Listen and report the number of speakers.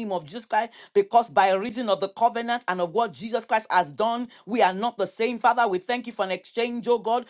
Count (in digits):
1